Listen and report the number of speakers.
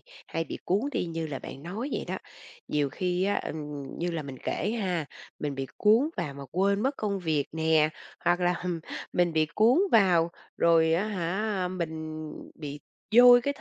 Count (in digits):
1